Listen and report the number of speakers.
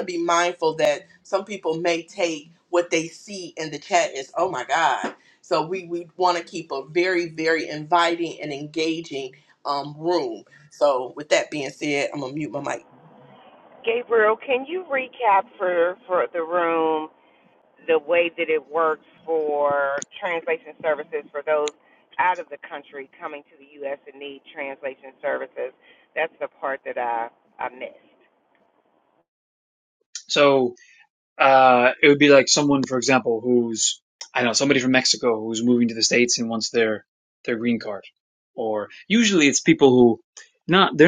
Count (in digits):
3